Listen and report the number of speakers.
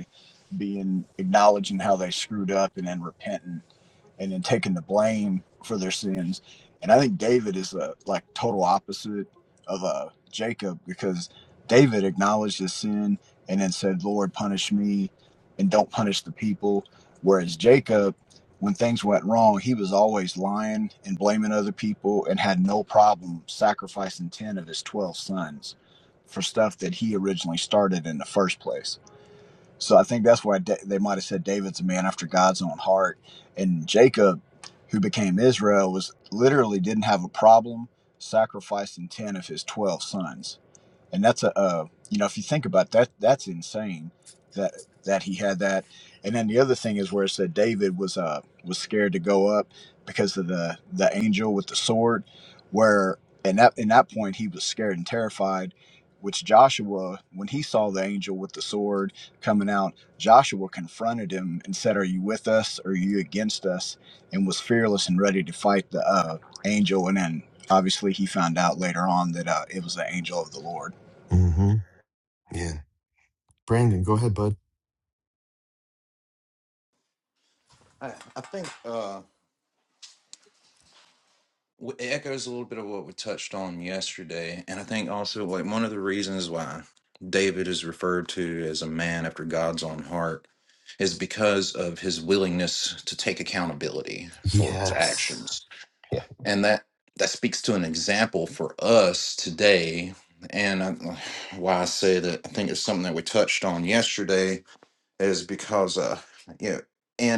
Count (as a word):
three